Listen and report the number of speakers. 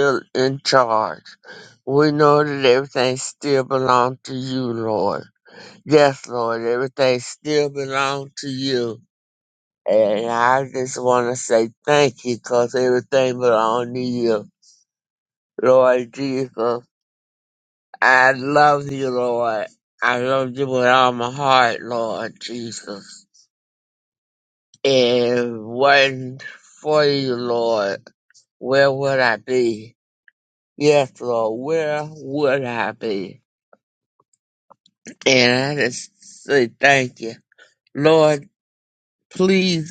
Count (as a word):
one